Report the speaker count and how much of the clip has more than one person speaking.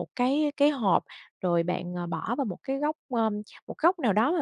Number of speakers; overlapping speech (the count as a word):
one, no overlap